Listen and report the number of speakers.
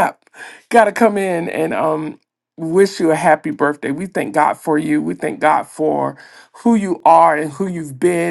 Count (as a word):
one